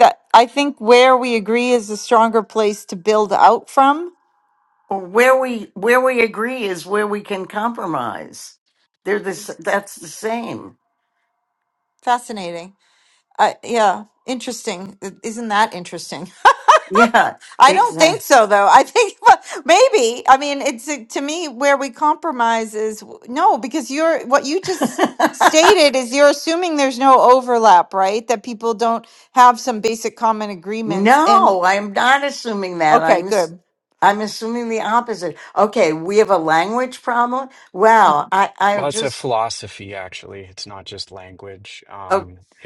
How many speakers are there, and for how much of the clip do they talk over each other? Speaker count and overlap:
3, about 5%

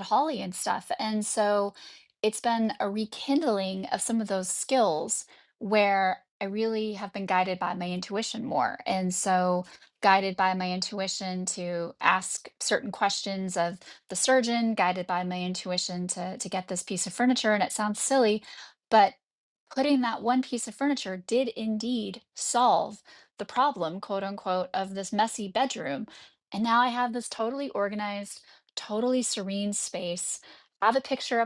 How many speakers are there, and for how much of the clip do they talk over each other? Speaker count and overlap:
1, no overlap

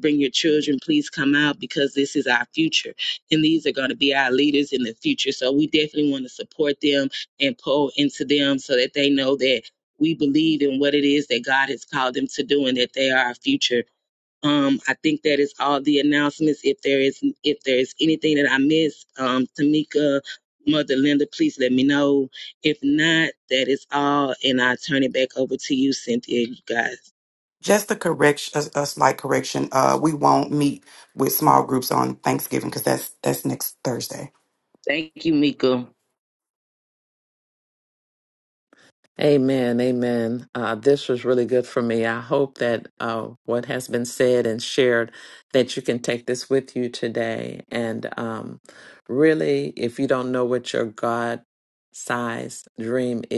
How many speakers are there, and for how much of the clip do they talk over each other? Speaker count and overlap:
3, no overlap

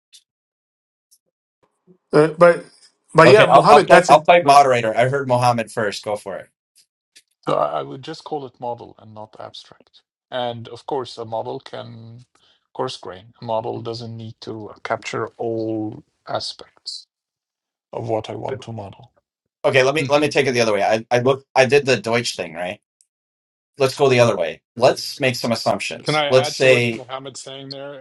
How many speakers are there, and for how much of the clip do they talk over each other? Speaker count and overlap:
4, about 8%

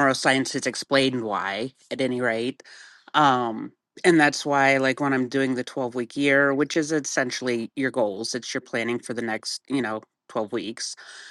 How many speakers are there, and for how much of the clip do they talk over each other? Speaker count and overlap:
1, no overlap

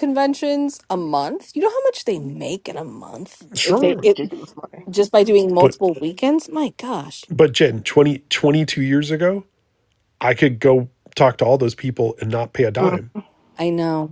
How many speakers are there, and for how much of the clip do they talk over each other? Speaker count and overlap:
3, about 7%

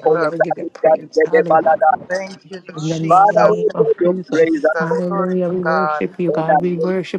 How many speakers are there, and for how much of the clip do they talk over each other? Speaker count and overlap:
3, about 66%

